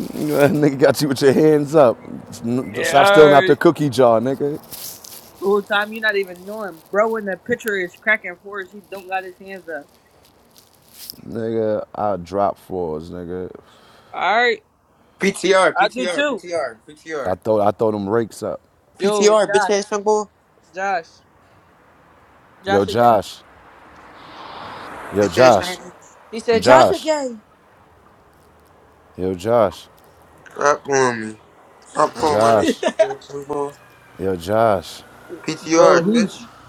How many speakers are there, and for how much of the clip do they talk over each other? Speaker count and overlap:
3, about 13%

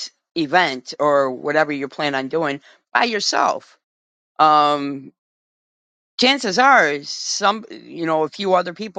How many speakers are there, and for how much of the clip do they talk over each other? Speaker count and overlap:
1, no overlap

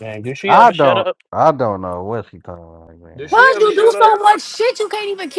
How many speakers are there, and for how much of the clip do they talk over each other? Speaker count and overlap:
3, about 27%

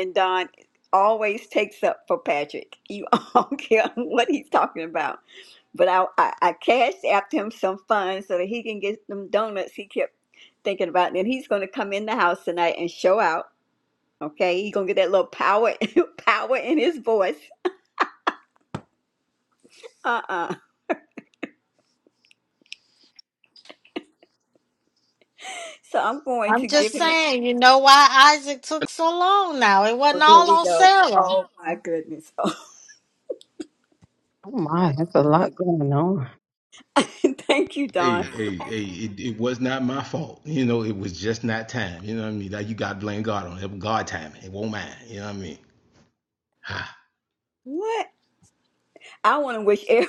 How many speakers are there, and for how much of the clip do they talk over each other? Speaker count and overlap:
4, about 4%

